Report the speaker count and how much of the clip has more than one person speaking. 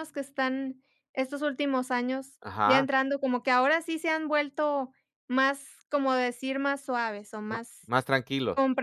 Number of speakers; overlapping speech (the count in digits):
2, about 4%